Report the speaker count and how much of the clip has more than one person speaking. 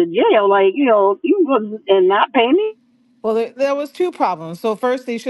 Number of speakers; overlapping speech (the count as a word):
two, no overlap